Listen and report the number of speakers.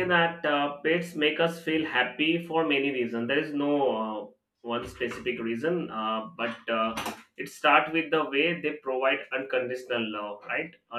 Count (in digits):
1